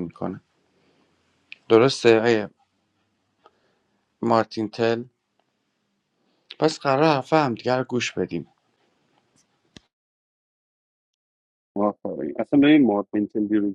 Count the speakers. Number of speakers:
2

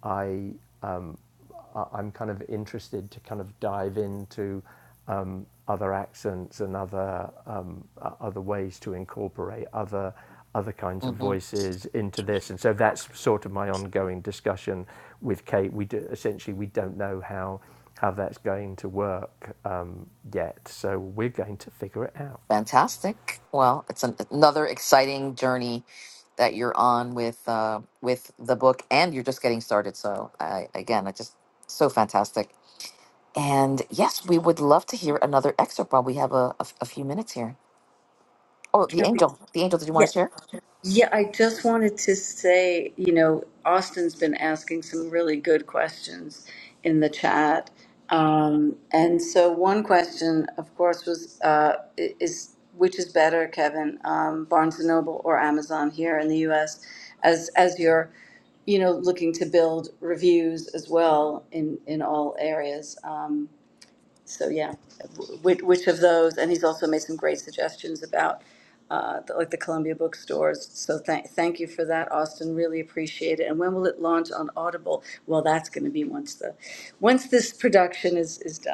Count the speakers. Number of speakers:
3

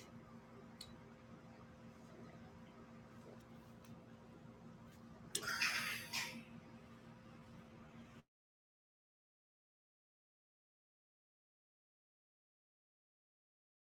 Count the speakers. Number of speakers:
0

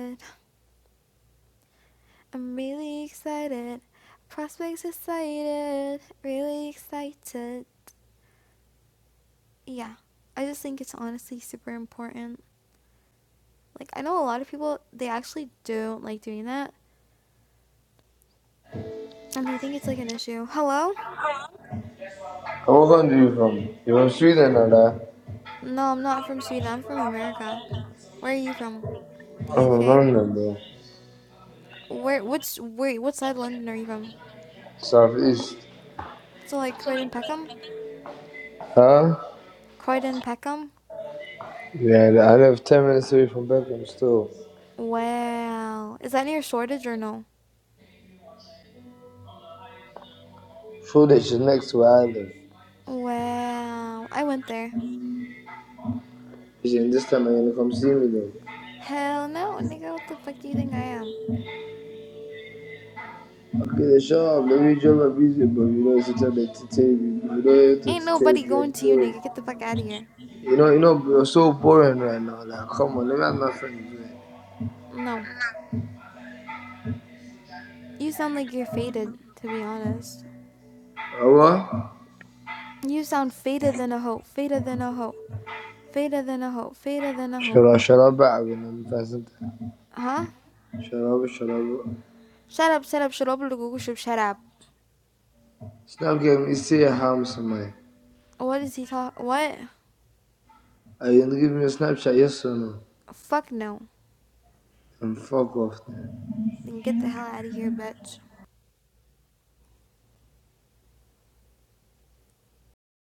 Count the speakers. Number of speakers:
2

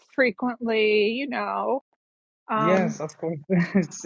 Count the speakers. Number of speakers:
2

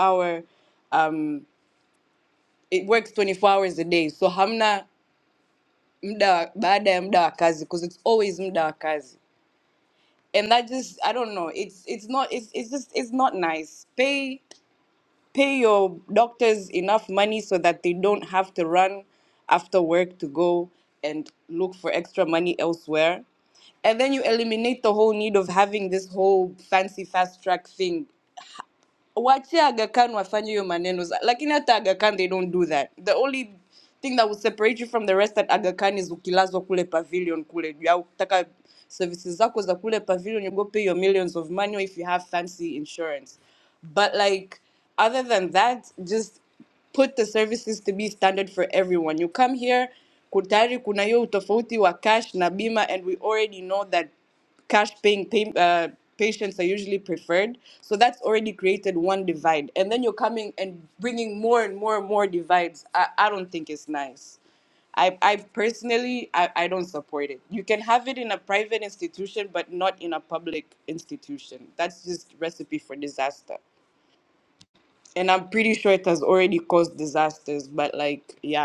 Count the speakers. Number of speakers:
1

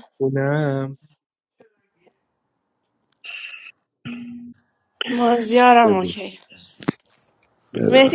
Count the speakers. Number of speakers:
2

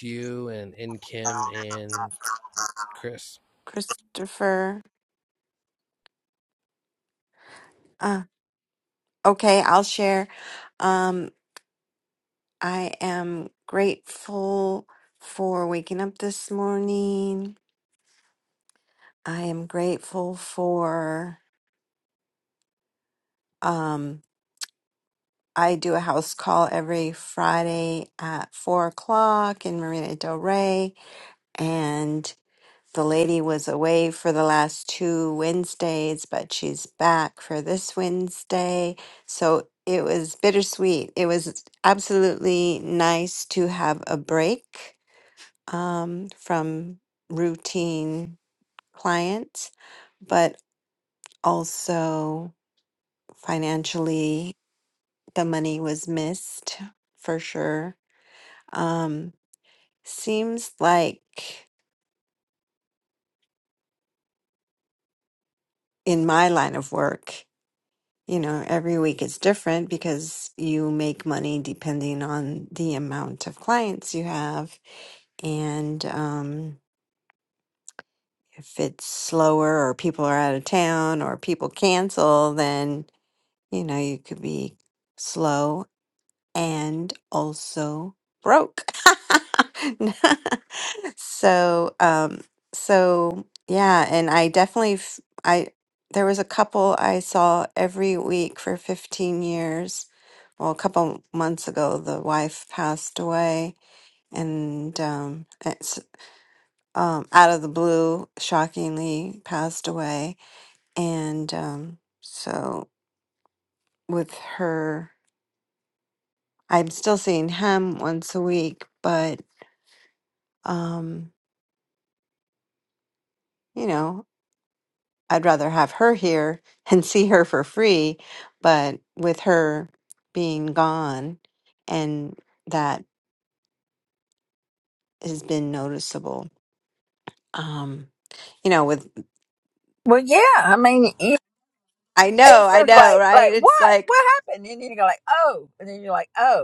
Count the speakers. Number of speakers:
3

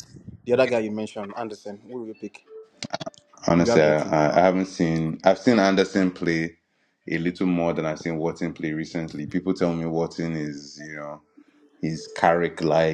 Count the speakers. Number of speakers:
2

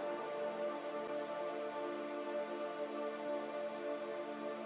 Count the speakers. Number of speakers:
0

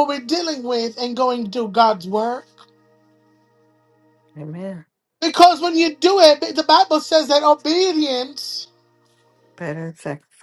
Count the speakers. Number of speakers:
2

